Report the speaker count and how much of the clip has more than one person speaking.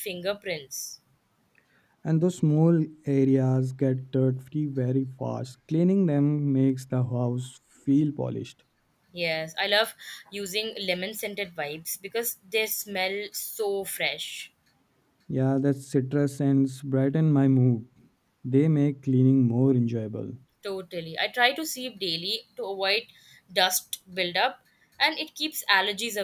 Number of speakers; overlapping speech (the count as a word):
two, no overlap